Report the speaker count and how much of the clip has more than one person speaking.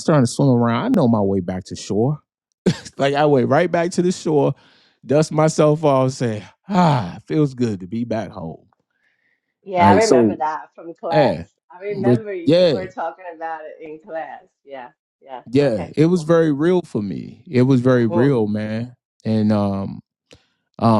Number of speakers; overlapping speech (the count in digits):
2, about 12%